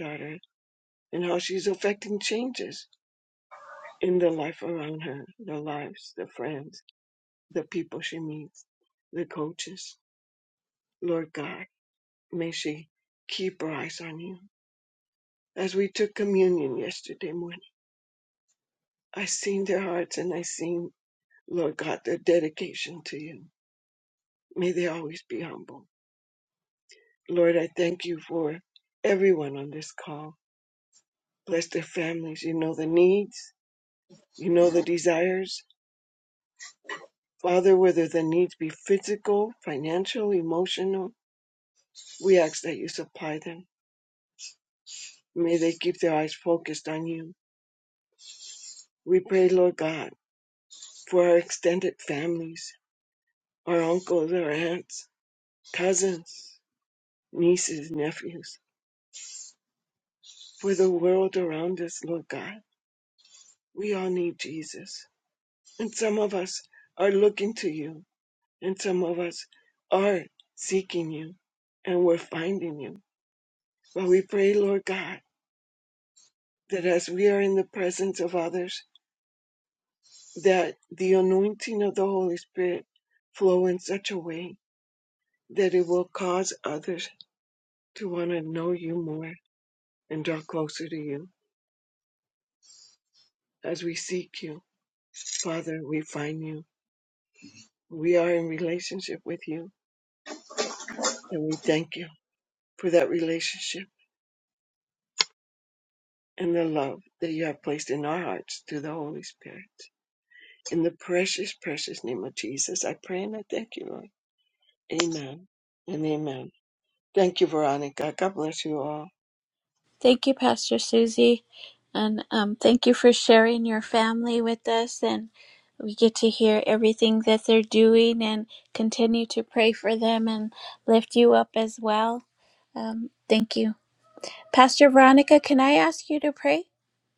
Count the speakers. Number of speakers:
2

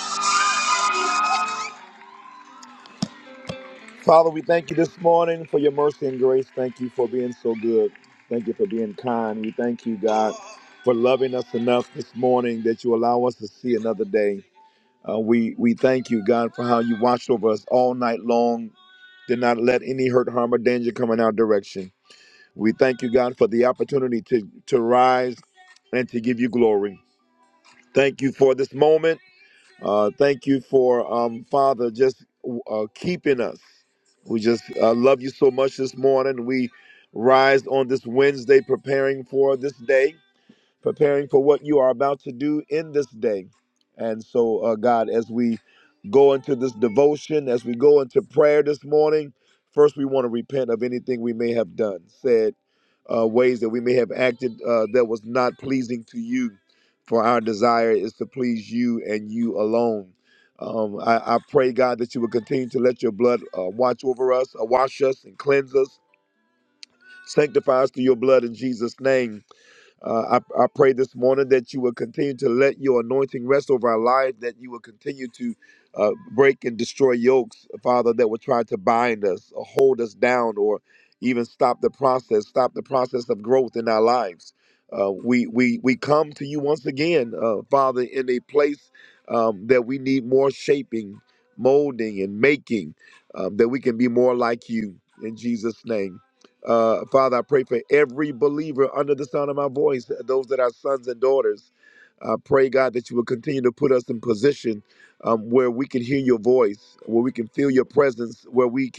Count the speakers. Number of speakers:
1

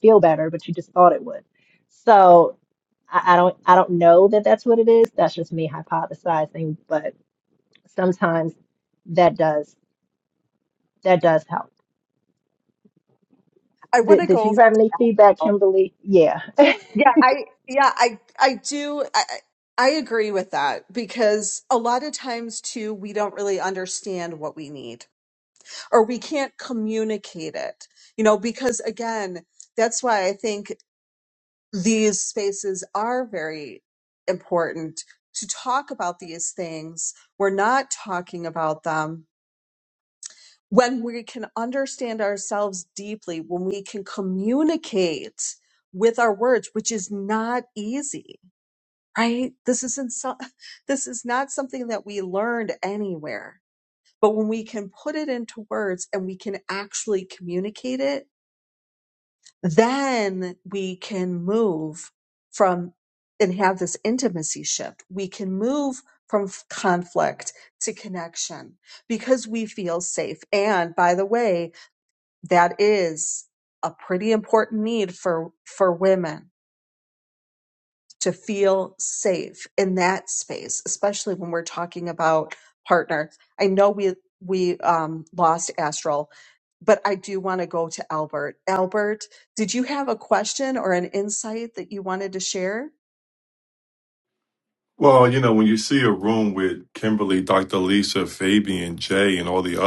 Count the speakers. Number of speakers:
3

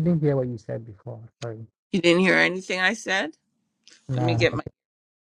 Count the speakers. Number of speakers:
2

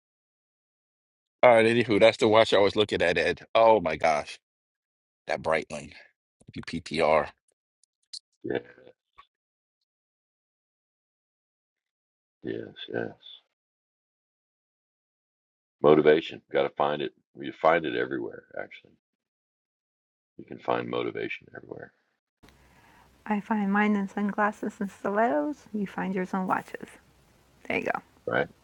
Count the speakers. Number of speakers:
3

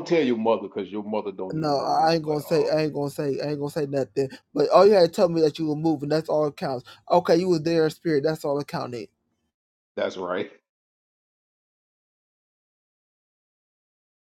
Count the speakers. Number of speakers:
2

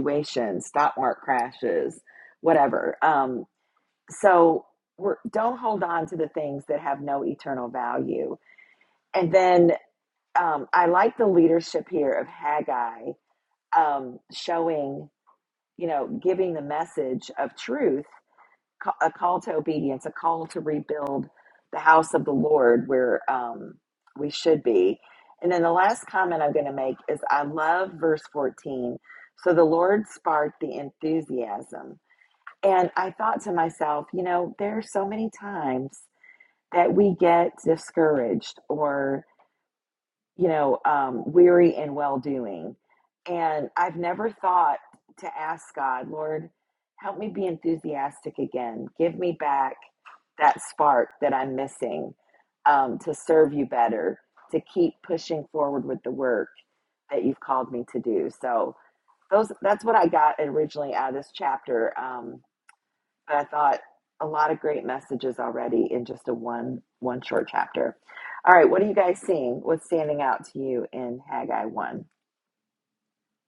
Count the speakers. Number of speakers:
1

